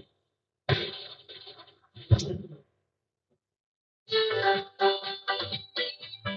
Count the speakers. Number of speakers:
0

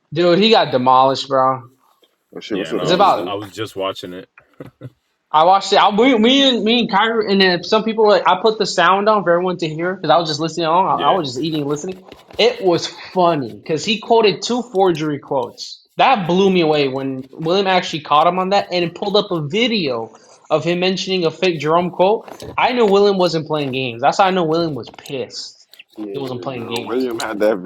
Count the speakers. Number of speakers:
3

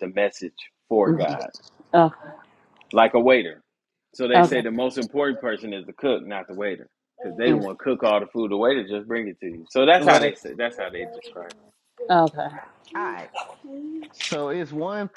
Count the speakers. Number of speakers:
3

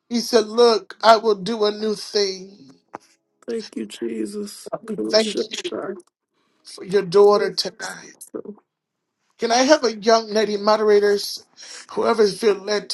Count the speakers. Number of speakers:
2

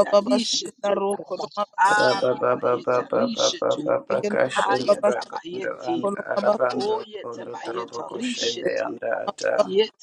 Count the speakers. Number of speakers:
3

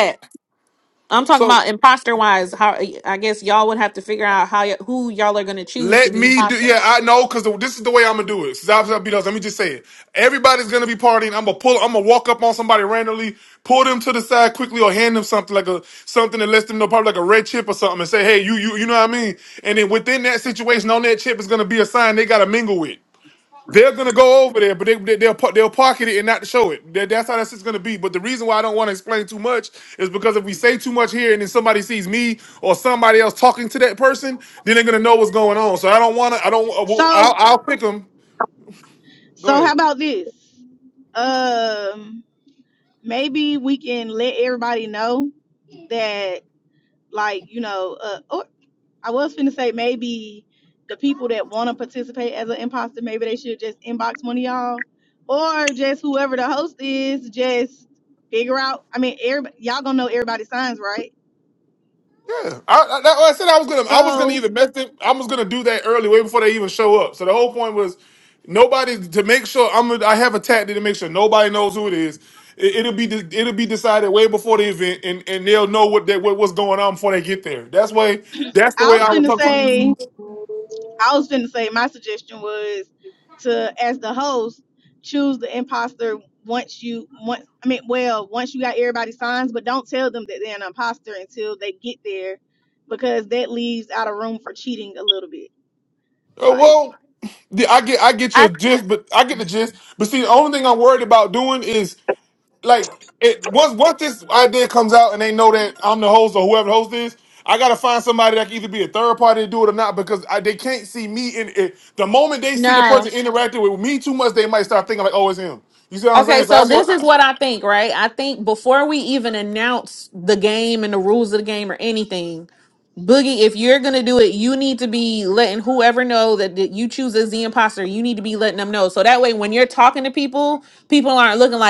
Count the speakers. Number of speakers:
3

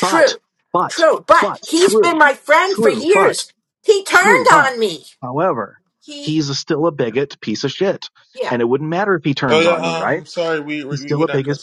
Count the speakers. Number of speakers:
3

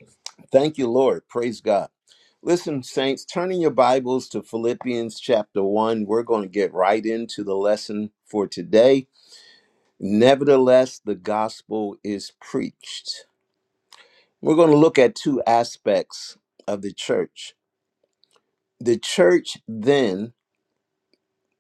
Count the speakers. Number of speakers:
1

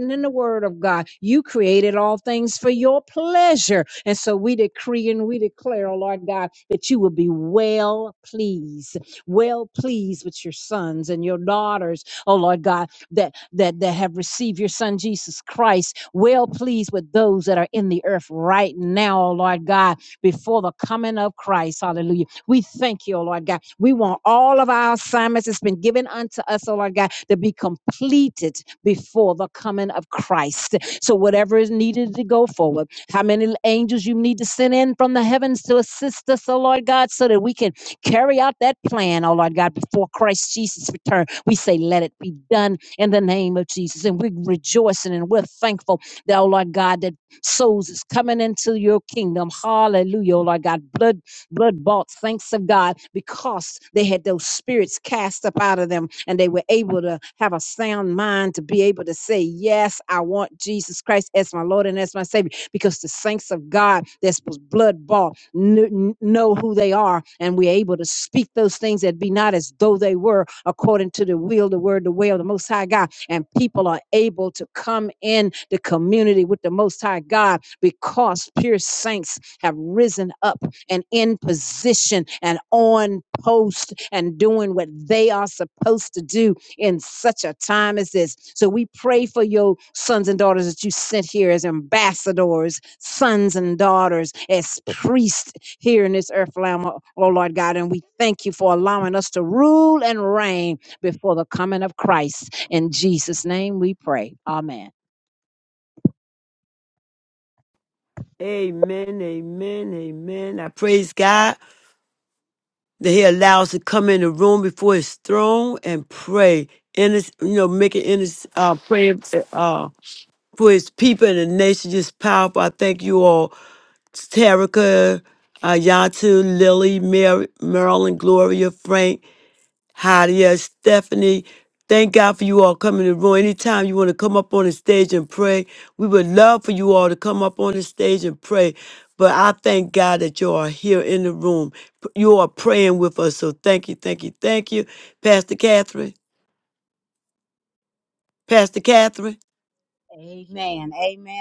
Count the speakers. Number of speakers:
2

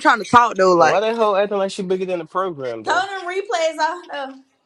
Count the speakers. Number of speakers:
3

